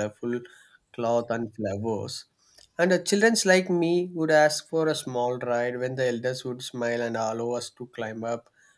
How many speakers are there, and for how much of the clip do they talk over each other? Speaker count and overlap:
one, no overlap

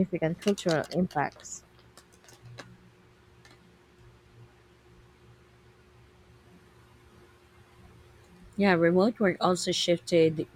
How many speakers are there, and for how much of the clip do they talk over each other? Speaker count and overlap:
two, no overlap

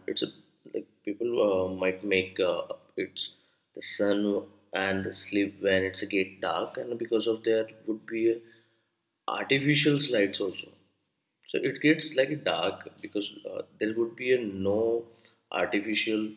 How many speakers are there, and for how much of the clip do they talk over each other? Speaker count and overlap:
one, no overlap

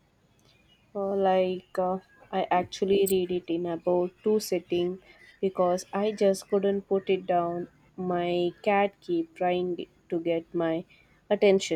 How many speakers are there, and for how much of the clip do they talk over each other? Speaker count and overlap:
one, no overlap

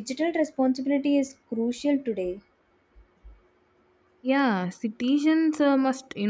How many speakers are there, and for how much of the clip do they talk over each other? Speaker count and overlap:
two, no overlap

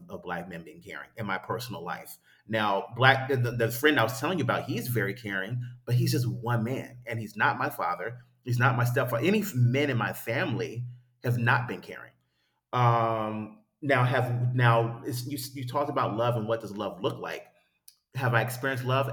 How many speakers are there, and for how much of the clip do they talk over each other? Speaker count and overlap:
one, no overlap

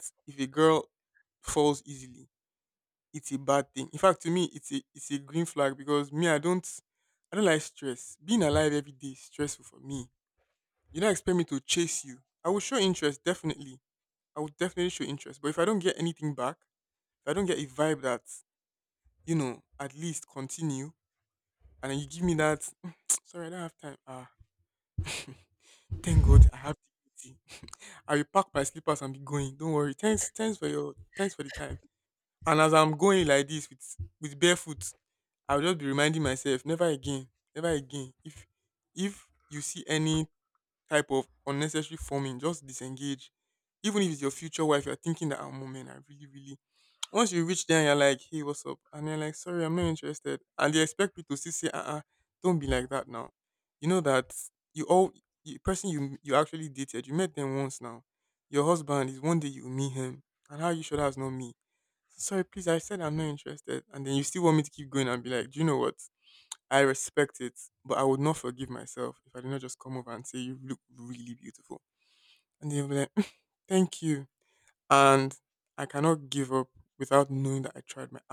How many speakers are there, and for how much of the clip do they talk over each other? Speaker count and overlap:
one, no overlap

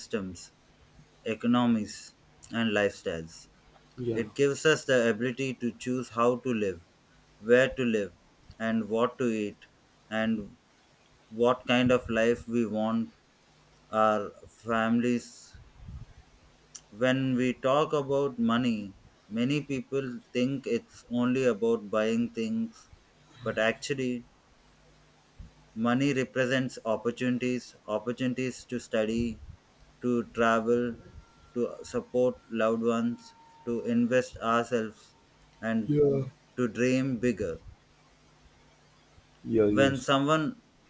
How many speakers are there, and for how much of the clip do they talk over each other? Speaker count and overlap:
two, about 1%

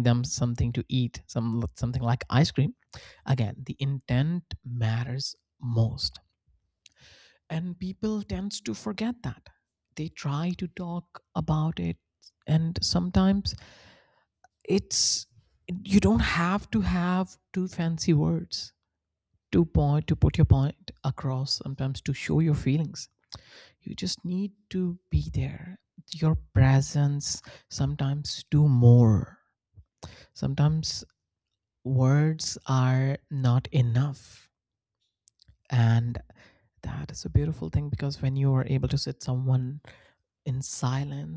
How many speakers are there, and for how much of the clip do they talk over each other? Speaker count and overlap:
one, no overlap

